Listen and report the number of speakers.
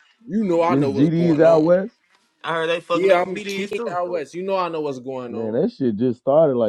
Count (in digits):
3